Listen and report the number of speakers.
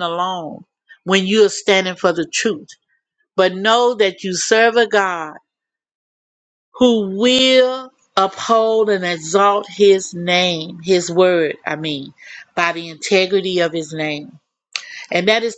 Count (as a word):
one